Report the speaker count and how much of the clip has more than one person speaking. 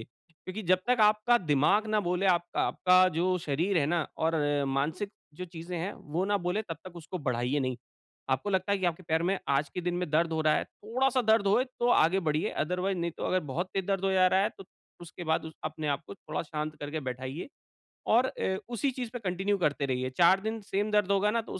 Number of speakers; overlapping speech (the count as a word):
one, no overlap